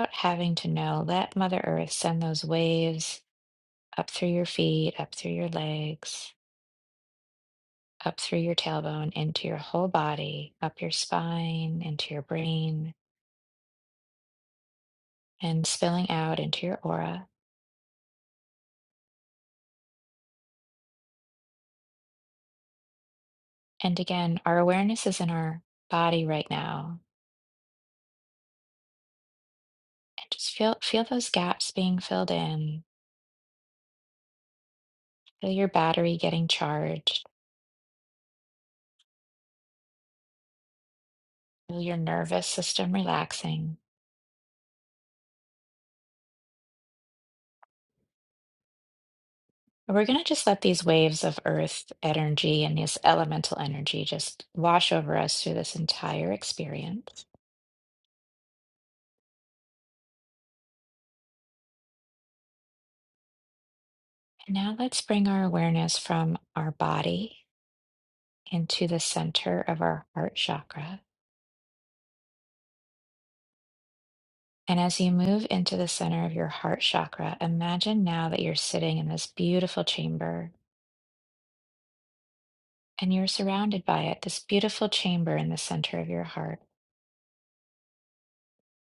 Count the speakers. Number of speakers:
one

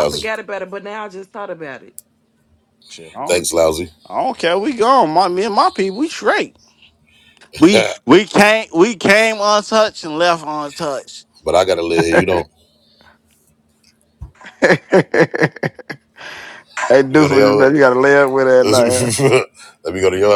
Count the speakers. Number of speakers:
four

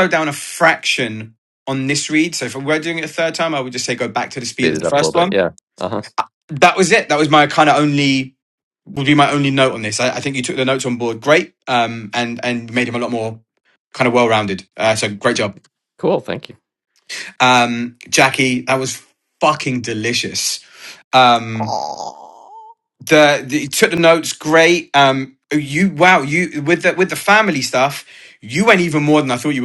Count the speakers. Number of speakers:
three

